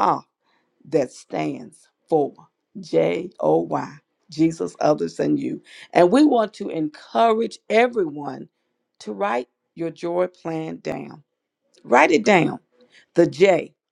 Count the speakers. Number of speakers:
one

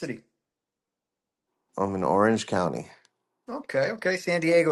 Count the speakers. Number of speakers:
two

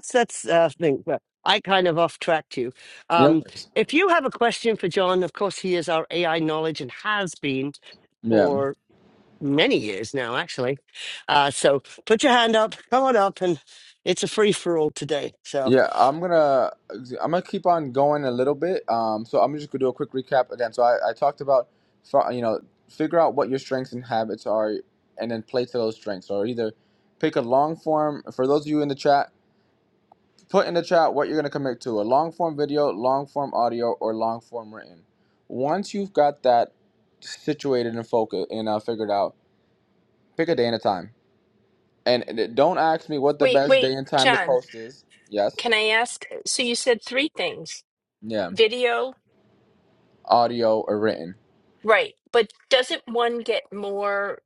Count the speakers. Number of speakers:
three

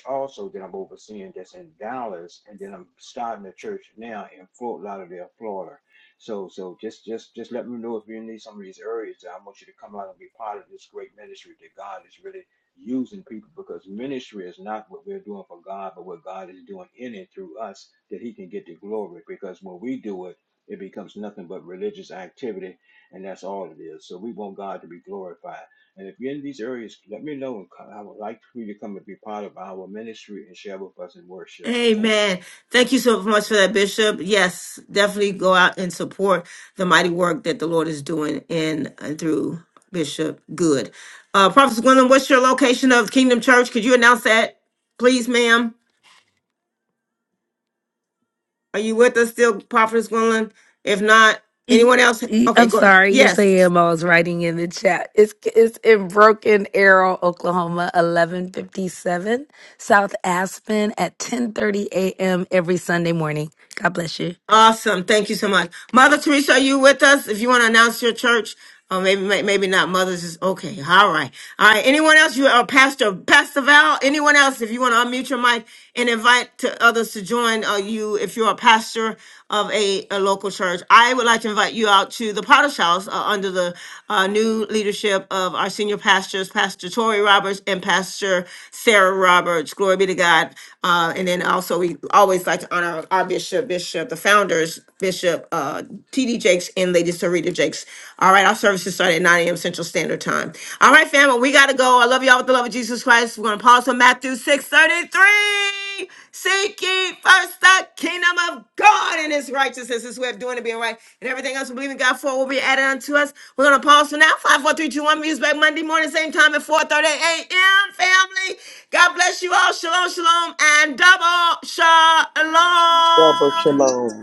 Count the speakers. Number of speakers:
four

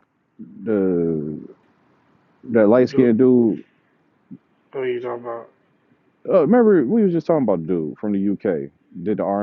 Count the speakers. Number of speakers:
two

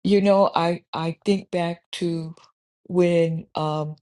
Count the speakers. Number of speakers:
one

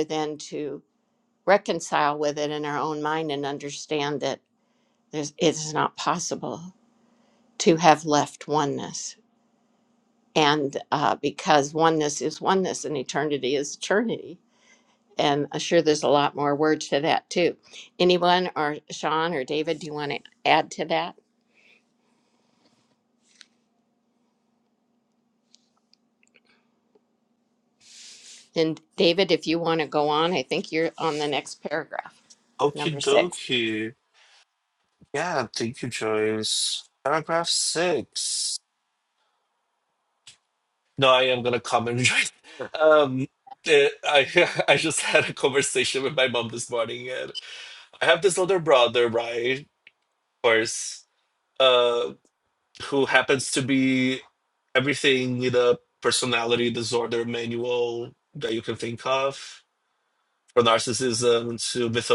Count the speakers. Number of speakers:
two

